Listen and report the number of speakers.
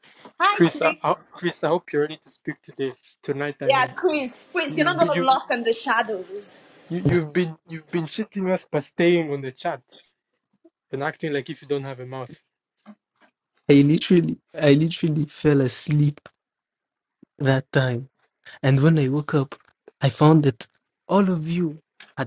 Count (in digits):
3